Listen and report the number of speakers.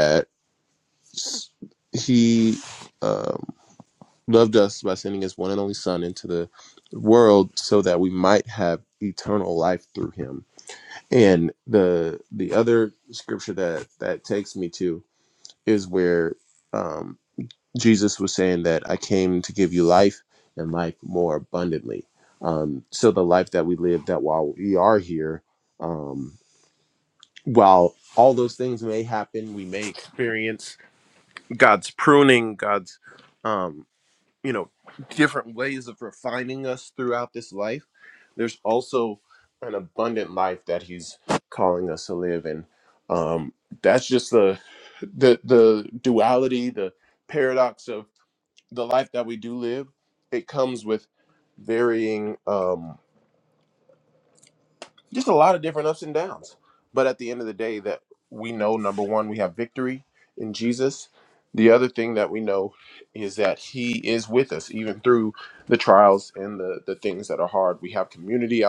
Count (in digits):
1